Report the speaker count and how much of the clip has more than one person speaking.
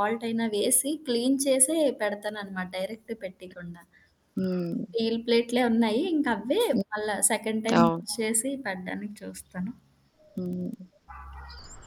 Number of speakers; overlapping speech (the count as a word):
two, about 3%